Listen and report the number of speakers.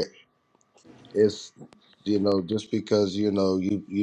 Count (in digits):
1